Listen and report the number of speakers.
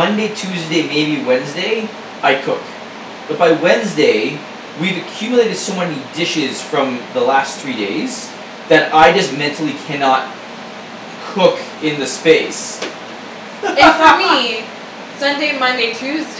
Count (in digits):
2